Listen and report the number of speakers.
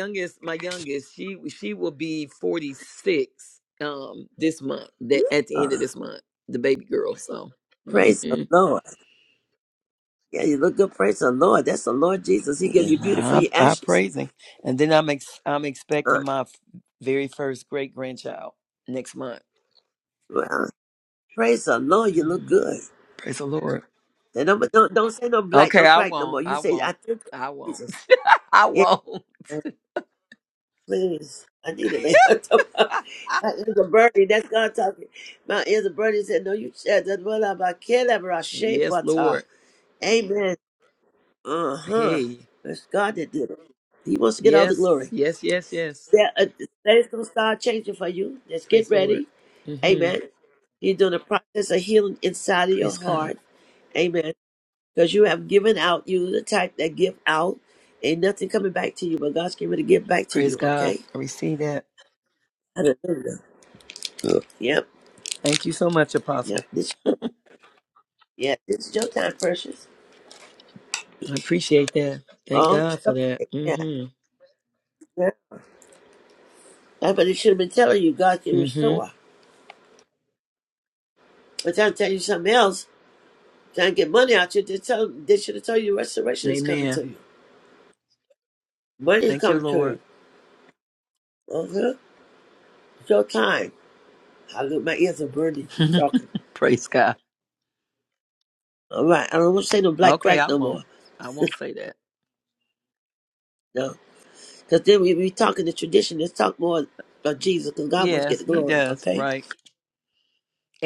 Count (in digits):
2